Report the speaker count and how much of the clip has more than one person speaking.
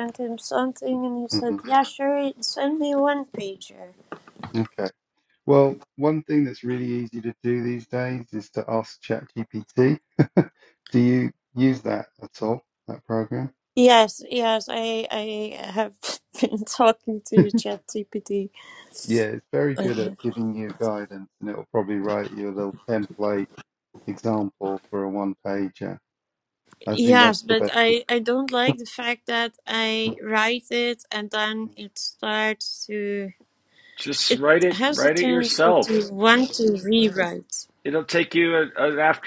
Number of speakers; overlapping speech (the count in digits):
3, about 8%